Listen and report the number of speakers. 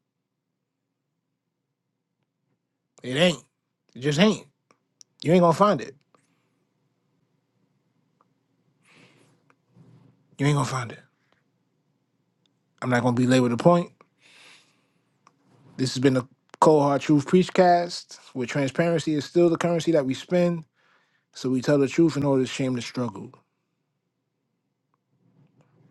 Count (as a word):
one